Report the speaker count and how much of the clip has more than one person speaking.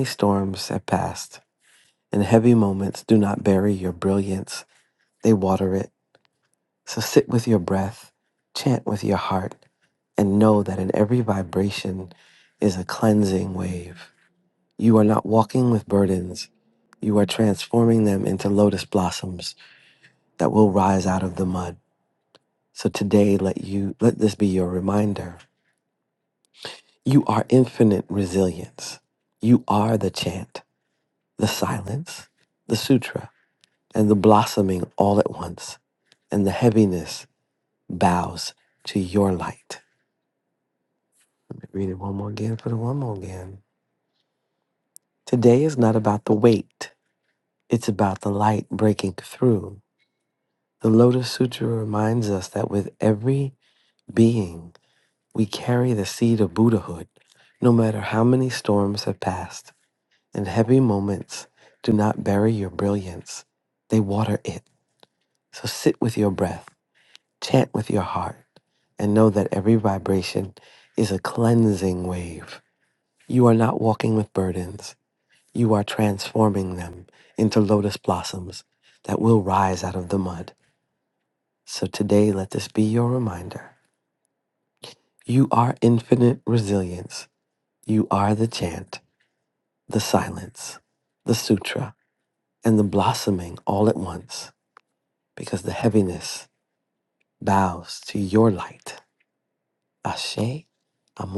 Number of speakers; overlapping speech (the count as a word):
one, no overlap